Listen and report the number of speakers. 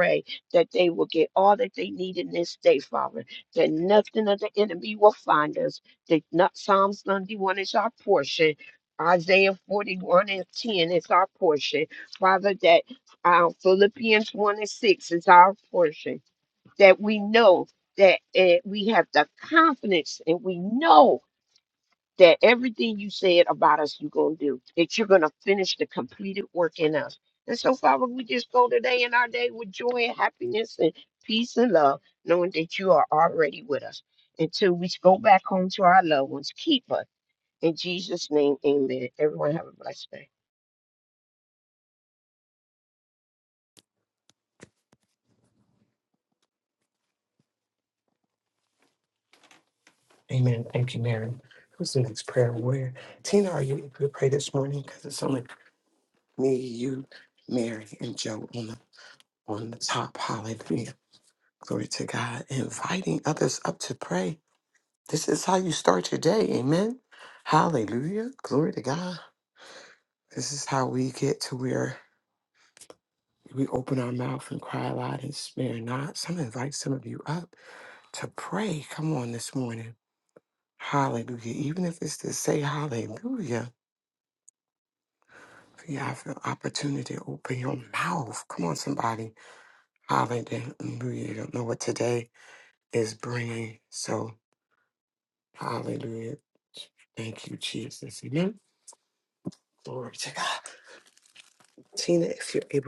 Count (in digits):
2